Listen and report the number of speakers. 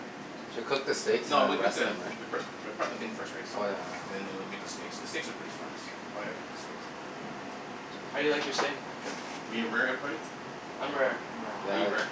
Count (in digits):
3